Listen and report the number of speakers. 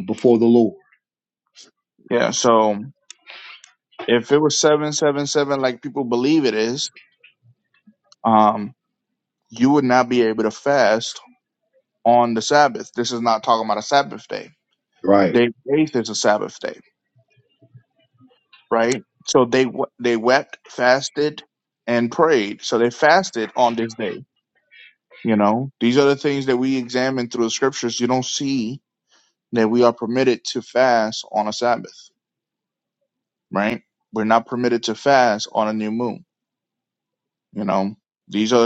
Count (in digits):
2